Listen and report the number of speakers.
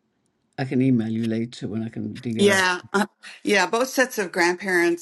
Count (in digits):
2